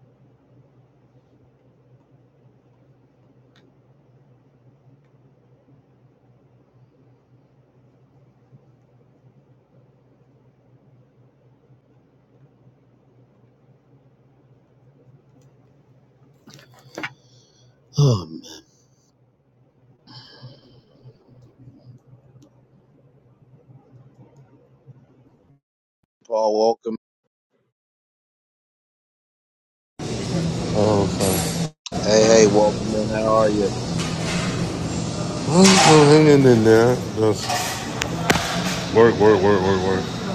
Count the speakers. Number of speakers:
two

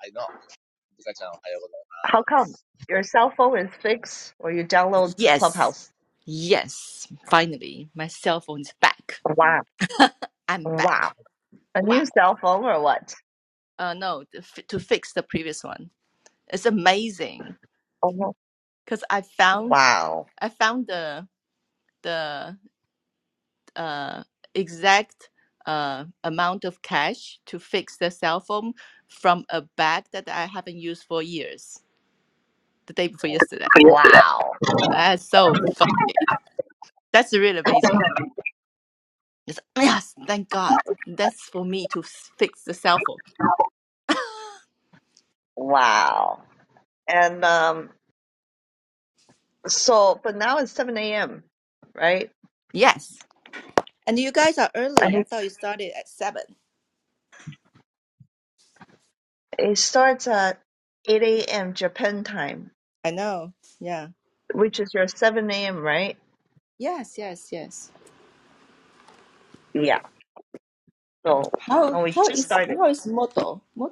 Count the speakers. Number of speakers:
three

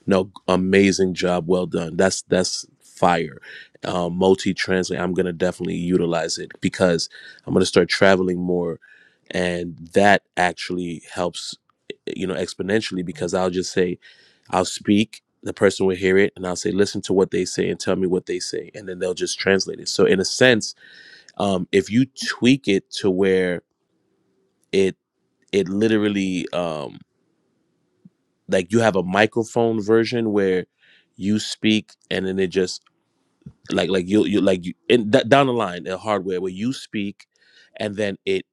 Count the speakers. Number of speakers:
one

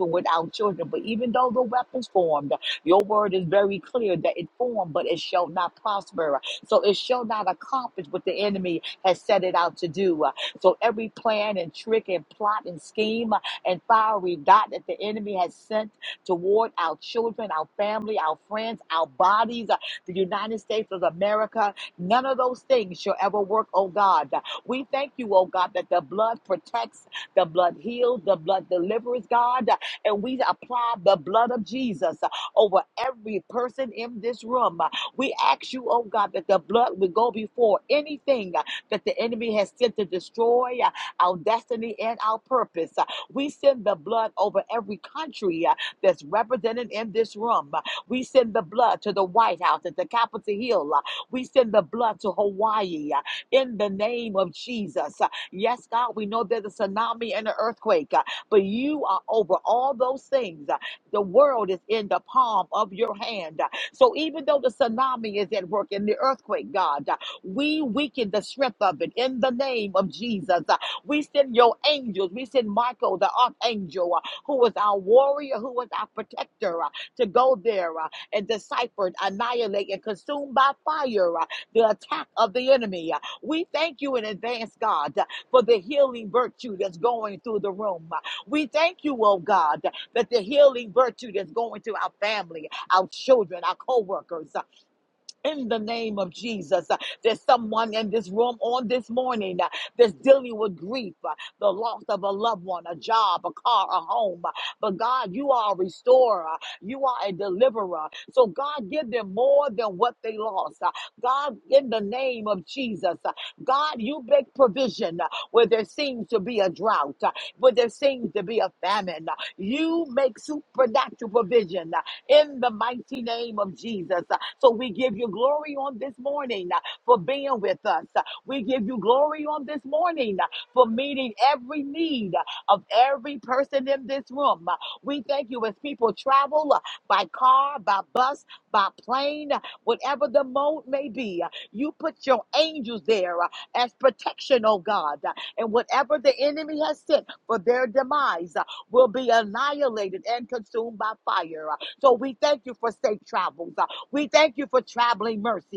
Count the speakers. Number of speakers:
one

